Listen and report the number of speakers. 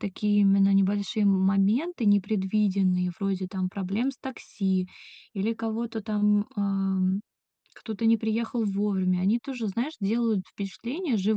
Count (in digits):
1